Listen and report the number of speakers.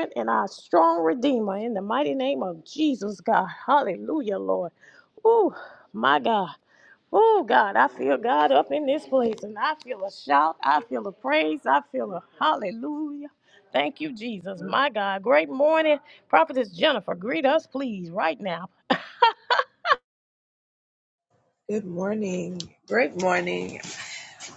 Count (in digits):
2